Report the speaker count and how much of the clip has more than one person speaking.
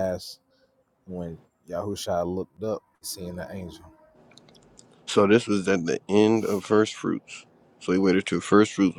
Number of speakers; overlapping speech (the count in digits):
2, no overlap